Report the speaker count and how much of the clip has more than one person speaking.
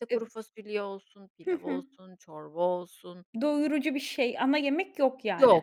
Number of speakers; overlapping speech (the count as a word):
two, about 13%